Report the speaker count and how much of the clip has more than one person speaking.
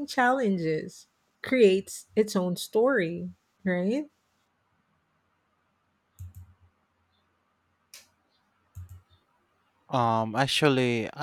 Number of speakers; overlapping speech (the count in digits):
2, no overlap